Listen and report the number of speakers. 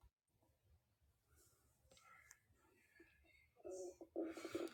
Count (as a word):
zero